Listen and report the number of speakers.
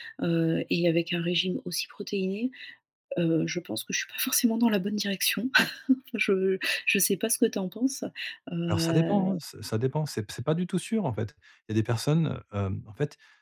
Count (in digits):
2